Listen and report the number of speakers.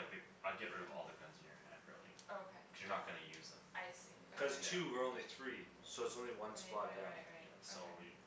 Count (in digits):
3